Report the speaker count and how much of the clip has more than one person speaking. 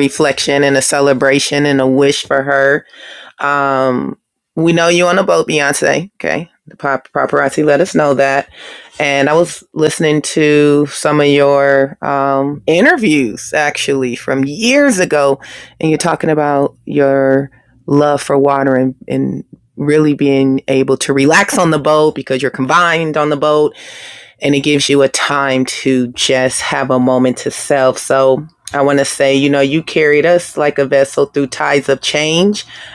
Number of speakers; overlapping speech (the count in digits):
1, no overlap